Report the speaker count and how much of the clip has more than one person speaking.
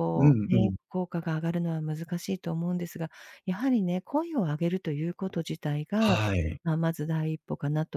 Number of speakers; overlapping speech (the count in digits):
2, about 8%